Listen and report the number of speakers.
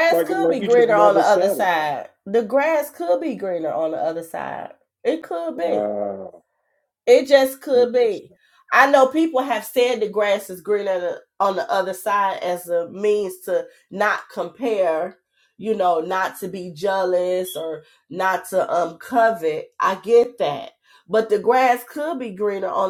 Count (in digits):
2